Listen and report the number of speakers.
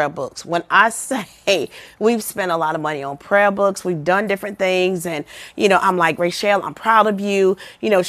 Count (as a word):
one